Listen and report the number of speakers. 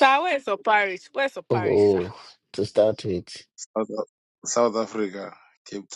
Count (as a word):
three